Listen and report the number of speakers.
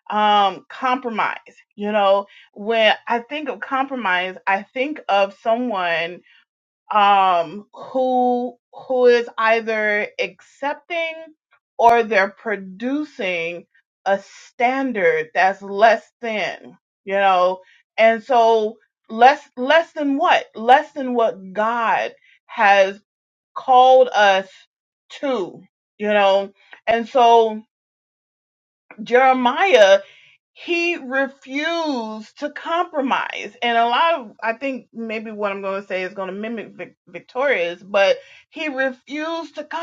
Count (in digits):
1